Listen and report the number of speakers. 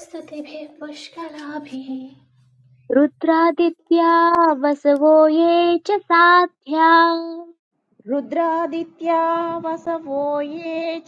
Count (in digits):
3